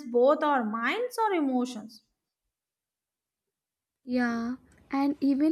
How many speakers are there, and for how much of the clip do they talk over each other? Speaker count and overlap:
two, no overlap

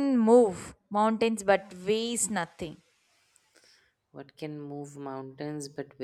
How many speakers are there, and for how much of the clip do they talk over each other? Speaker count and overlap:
two, no overlap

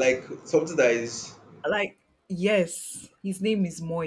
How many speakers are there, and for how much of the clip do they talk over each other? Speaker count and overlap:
two, no overlap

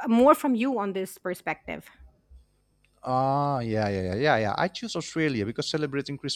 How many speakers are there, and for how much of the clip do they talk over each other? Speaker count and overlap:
two, no overlap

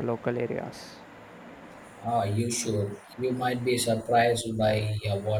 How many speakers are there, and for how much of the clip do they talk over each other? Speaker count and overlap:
two, no overlap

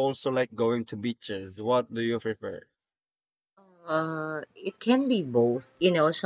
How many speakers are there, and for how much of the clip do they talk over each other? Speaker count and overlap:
two, no overlap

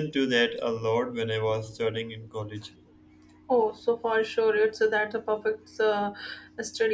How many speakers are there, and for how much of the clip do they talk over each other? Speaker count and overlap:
two, no overlap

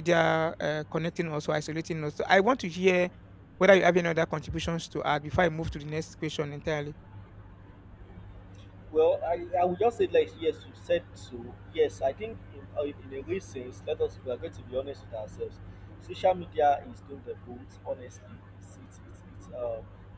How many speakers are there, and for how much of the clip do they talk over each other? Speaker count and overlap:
two, no overlap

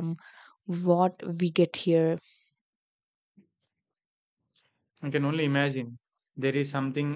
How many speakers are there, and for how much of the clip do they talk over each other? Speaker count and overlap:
two, no overlap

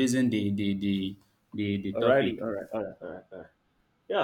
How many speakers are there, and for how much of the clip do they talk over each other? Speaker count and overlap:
two, about 10%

